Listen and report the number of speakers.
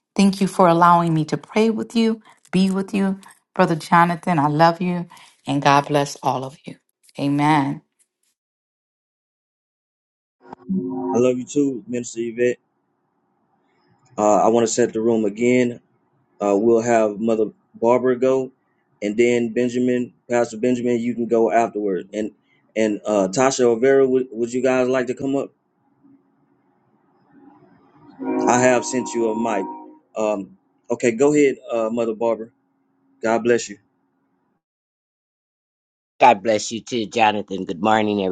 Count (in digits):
3